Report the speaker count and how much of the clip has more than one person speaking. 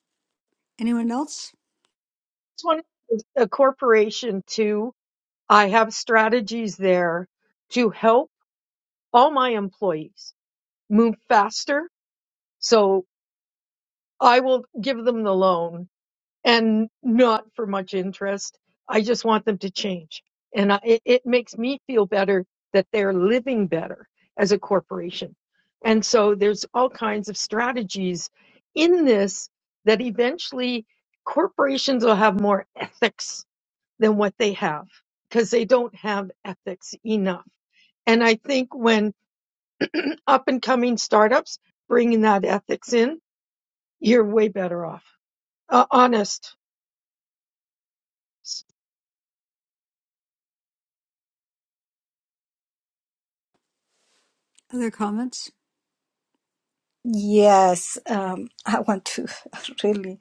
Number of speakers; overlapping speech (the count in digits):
3, no overlap